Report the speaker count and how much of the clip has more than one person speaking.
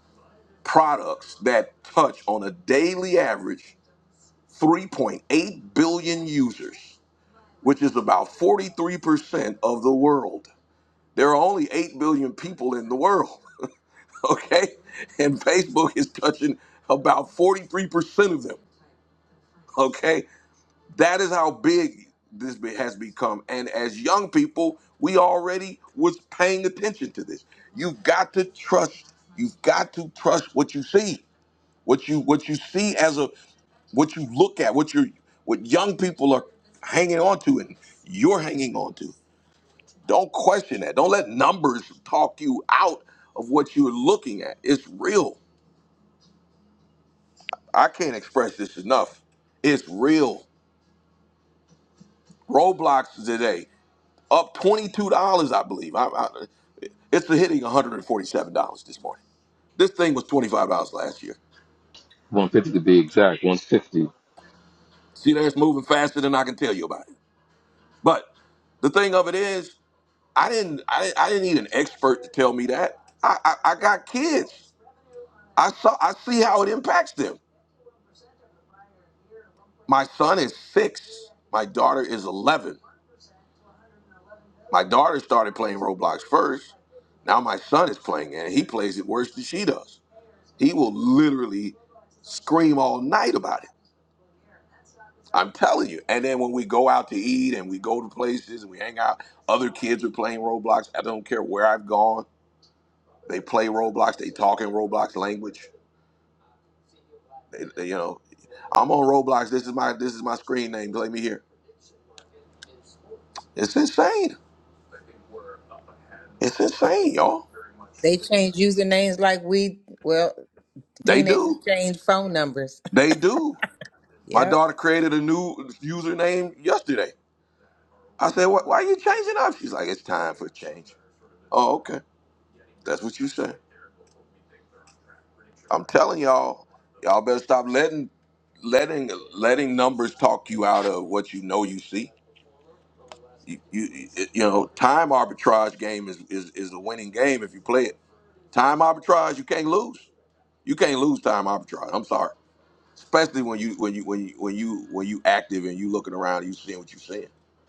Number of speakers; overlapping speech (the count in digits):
3, about 1%